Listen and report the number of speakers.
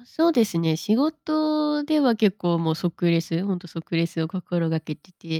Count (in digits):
1